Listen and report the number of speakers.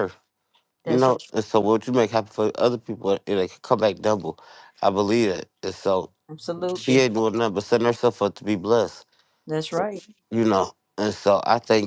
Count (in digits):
2